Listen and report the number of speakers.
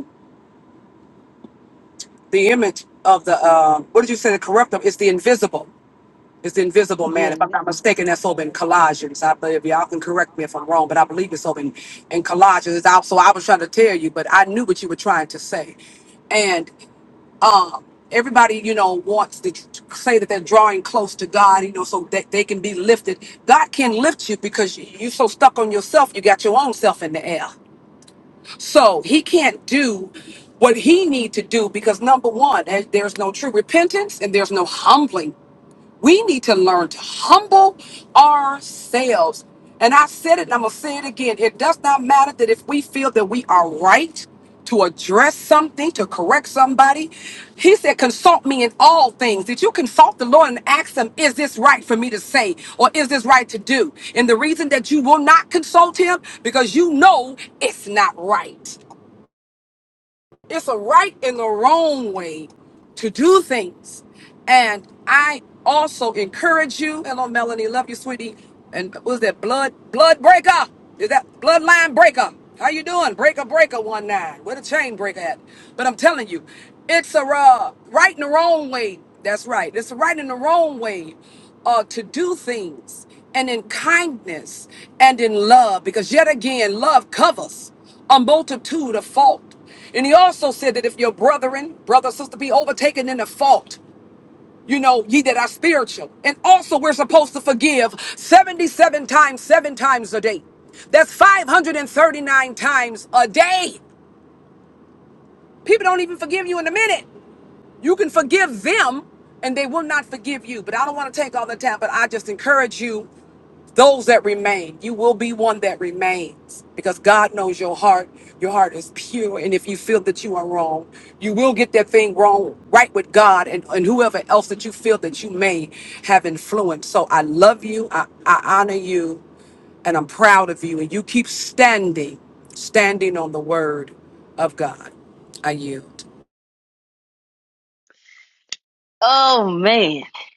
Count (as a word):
two